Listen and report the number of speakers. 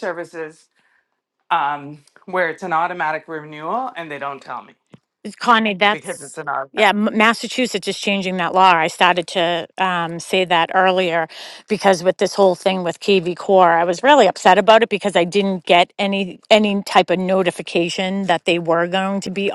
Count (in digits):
2